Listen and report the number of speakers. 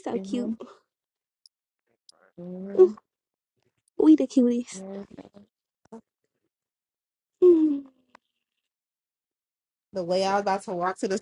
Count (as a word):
three